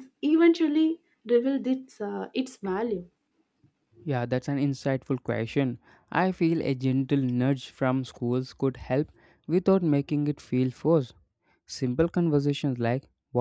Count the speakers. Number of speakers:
two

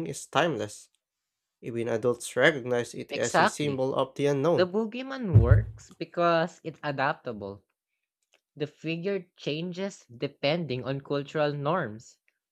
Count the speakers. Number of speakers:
two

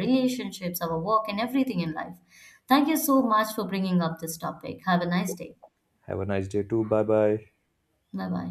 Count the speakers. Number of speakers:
two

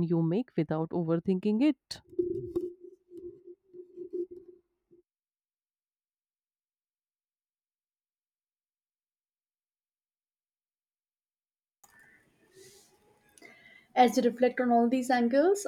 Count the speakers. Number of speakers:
two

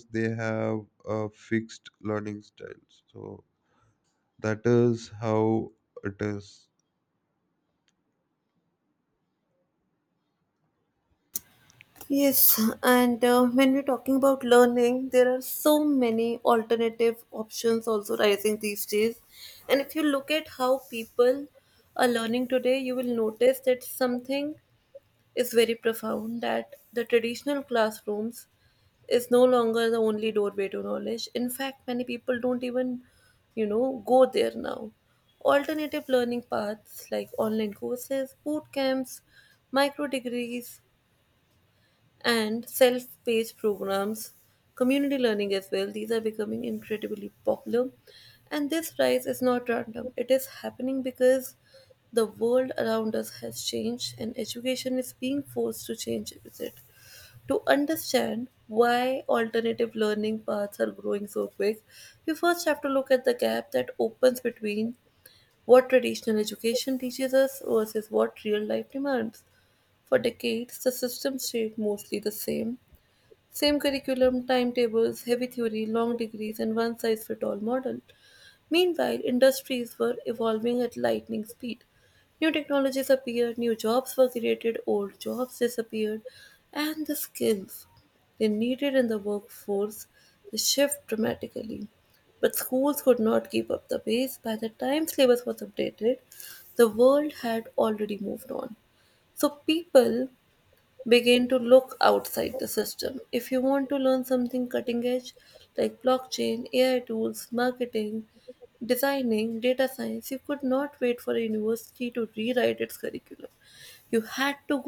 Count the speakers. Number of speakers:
two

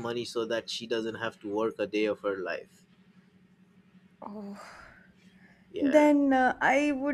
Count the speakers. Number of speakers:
two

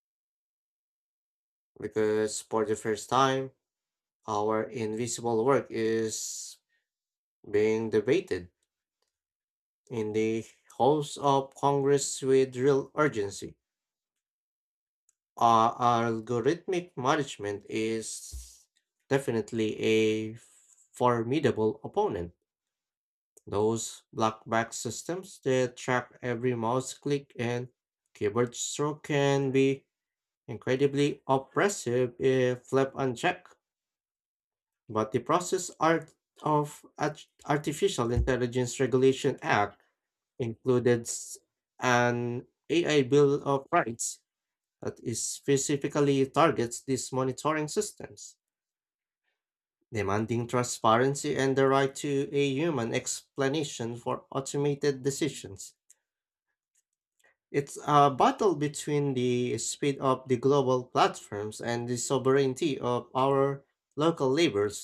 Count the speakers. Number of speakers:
one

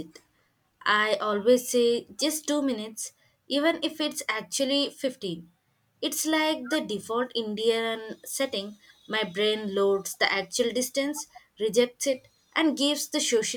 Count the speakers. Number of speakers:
one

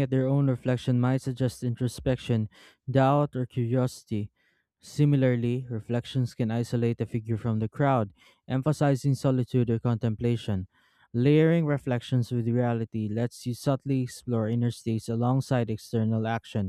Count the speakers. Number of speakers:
one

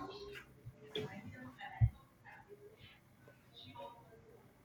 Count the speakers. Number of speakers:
zero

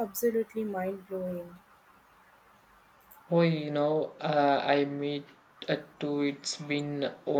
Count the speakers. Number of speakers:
two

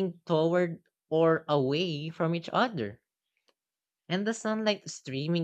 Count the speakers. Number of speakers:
one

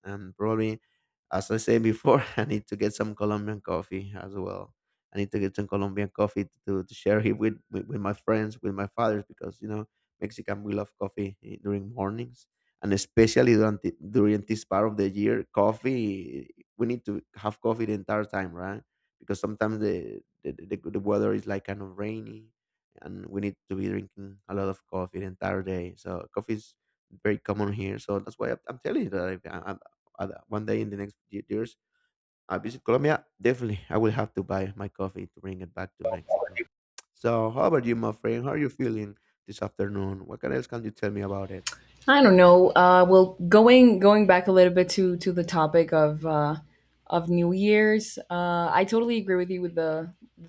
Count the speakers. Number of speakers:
two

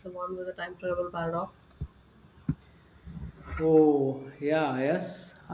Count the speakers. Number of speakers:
two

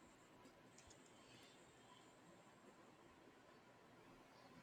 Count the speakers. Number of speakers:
zero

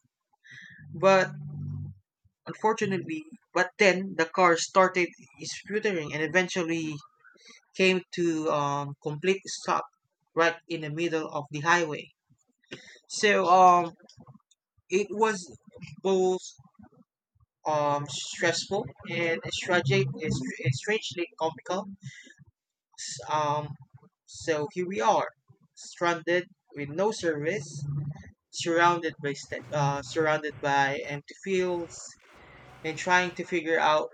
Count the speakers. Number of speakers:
one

